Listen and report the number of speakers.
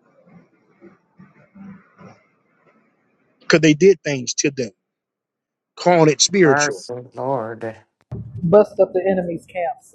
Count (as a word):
three